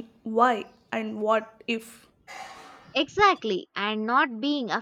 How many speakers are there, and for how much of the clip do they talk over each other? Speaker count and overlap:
2, no overlap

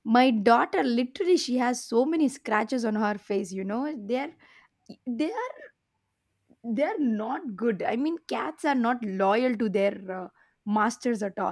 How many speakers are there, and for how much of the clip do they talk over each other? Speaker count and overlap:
1, no overlap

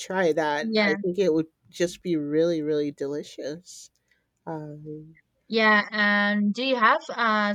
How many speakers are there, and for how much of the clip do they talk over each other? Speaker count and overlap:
2, about 1%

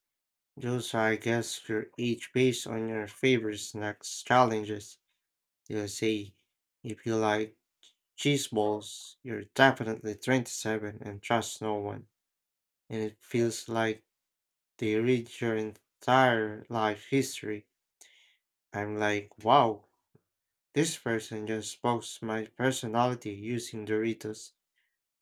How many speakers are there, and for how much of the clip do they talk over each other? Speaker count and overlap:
1, no overlap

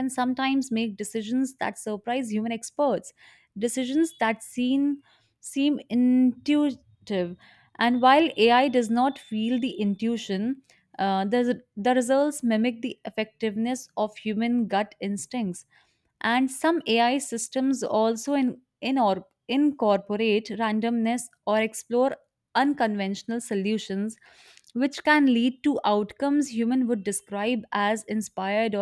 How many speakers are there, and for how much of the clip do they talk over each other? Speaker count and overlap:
1, no overlap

